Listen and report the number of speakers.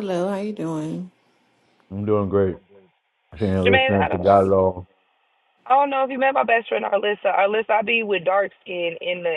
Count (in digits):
3